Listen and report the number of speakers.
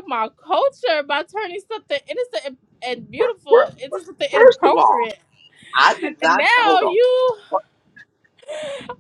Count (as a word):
two